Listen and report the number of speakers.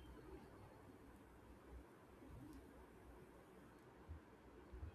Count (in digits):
0